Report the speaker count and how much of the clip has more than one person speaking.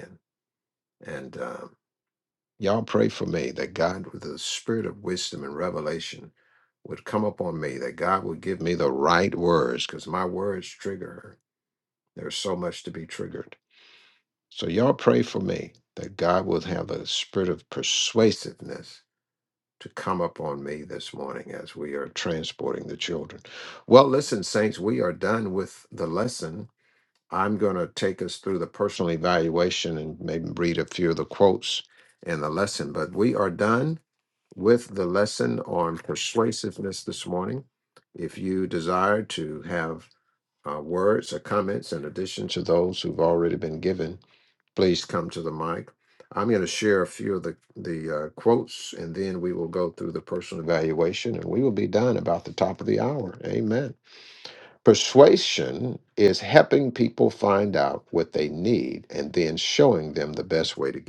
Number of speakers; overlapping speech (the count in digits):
1, no overlap